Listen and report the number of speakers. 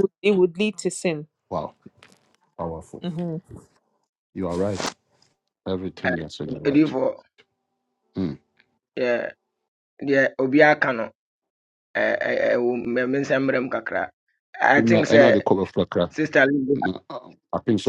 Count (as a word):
three